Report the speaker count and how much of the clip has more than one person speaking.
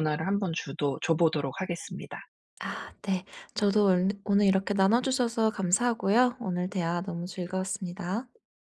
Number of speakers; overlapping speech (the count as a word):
two, no overlap